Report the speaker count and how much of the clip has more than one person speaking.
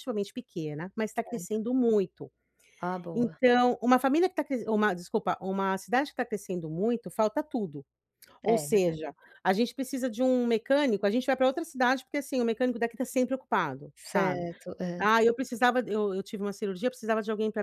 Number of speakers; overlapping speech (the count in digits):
2, about 7%